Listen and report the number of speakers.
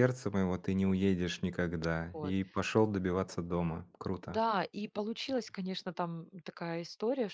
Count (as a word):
two